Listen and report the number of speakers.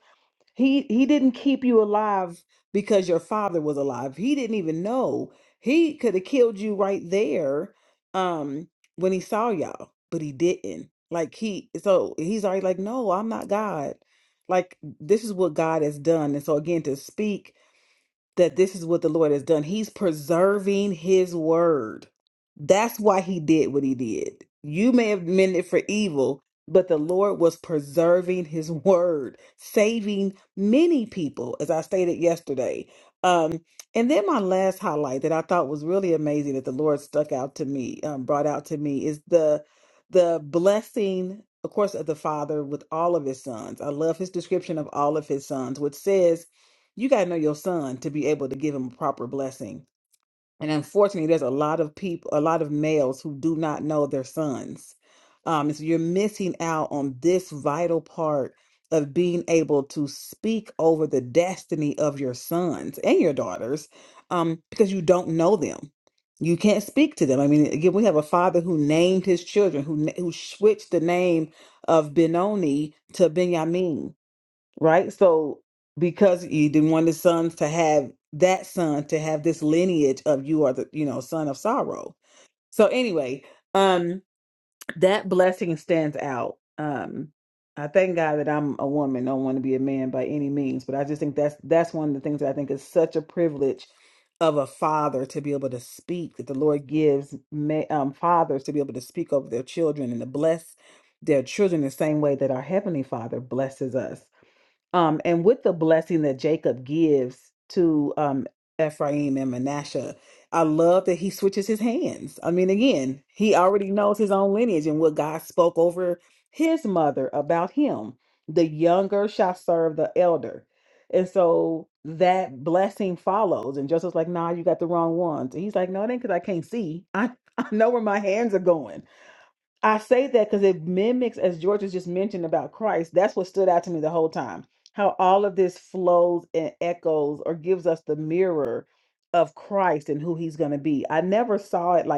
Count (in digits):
1